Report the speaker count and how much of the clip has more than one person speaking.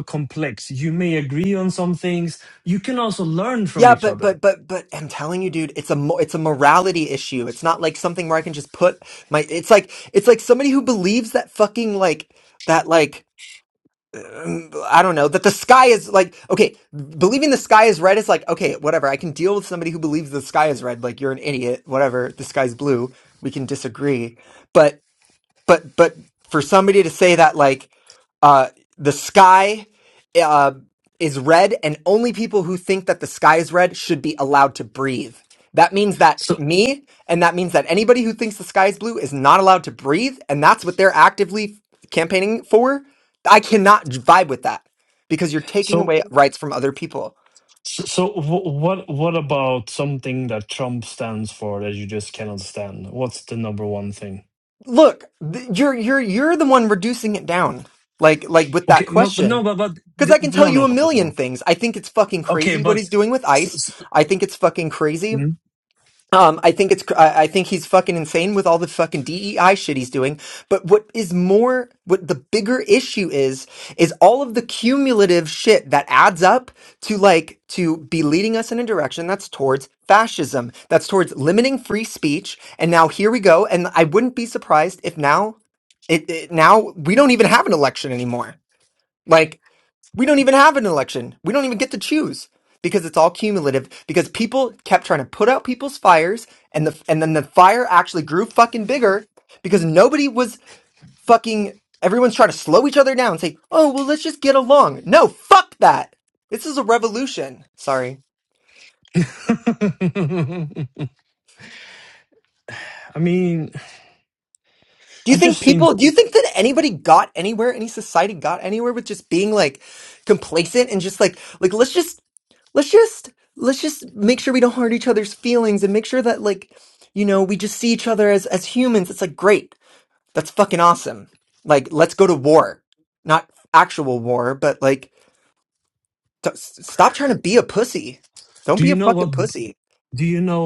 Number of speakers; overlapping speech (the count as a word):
two, about 3%